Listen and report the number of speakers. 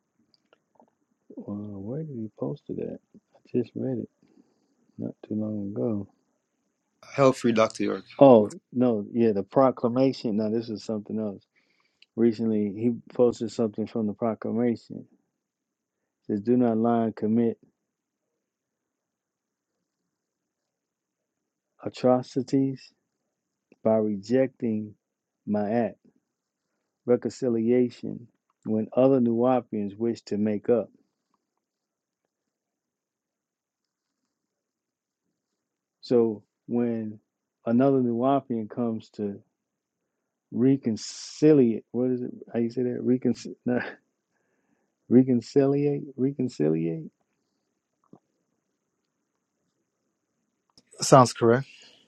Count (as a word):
two